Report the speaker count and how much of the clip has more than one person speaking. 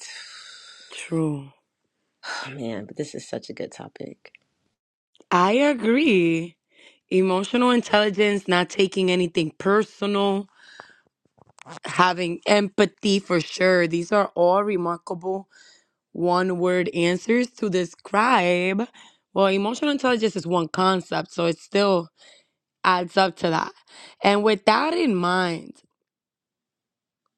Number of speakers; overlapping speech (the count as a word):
two, no overlap